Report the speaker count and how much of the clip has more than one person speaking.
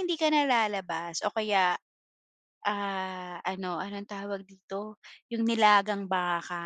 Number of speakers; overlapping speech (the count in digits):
1, no overlap